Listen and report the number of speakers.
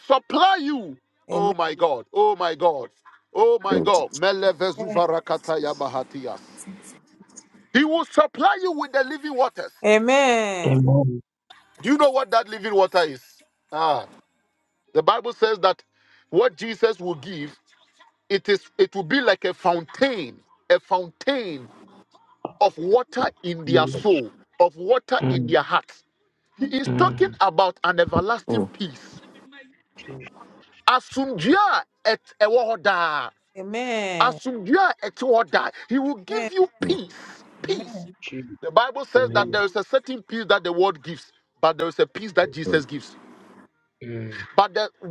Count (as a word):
three